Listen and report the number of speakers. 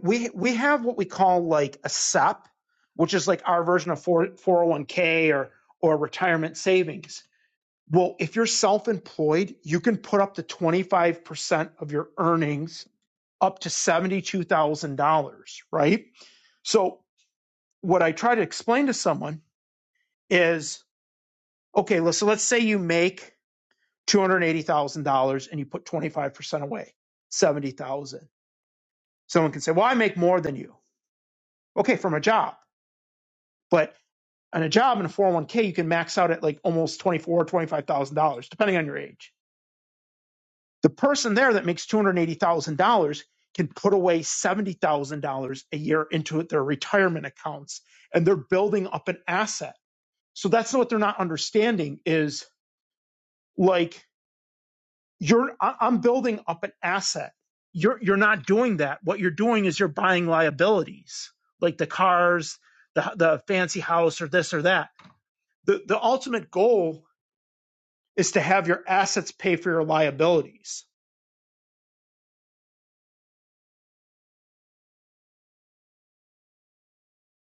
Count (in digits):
1